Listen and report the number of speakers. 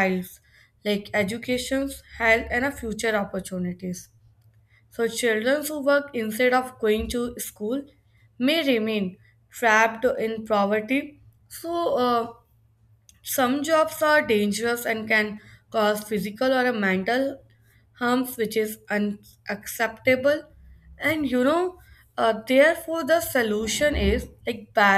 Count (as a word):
one